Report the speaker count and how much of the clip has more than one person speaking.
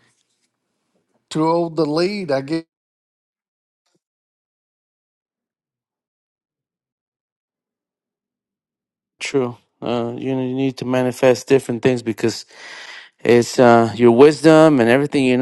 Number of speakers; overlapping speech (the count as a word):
two, no overlap